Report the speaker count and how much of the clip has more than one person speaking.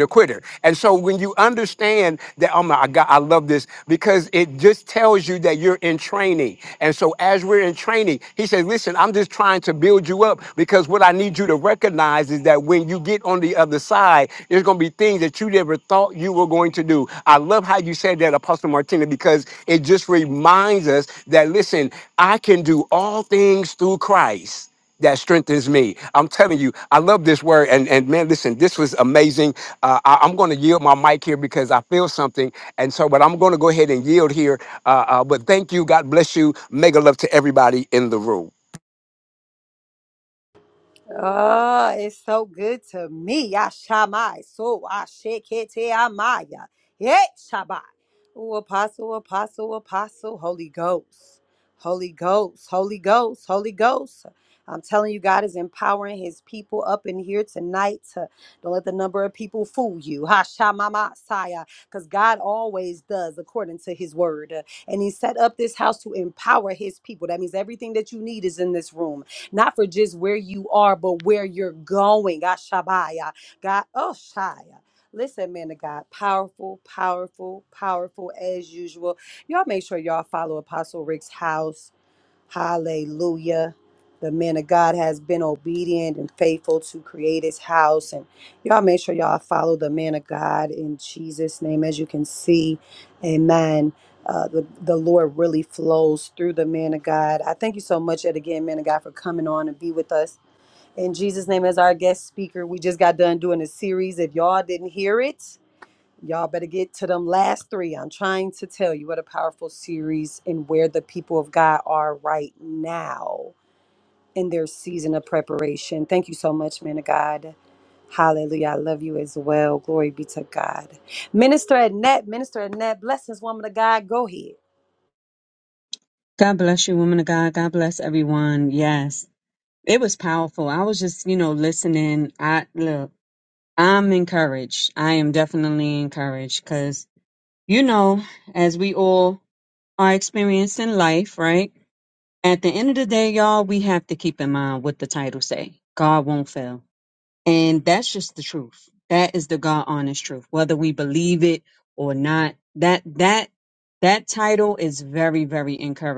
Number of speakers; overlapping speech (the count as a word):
three, no overlap